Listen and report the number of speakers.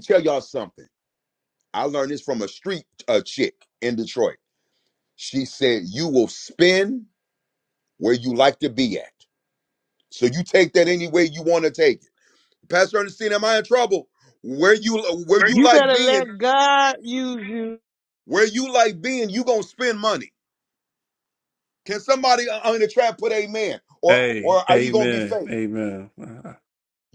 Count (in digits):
3